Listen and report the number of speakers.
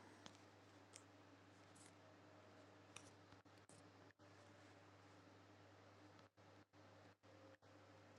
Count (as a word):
zero